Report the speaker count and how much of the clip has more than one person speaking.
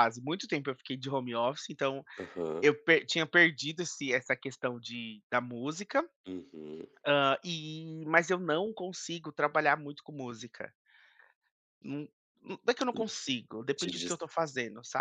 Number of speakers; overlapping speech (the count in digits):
2, about 3%